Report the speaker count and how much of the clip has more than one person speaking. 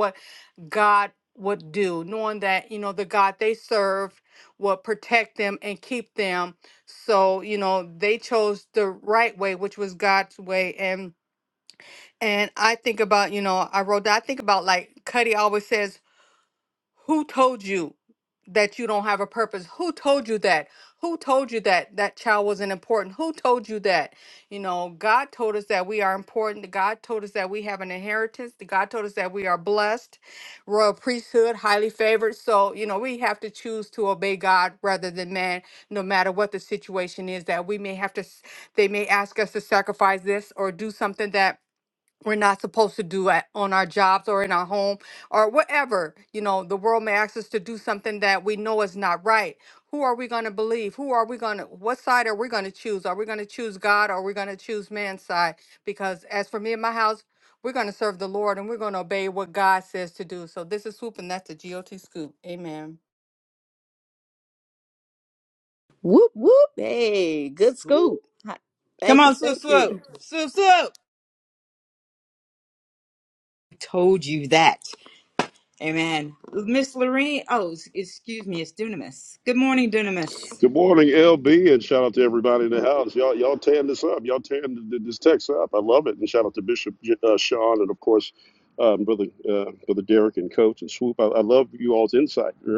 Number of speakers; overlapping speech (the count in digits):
4, about 1%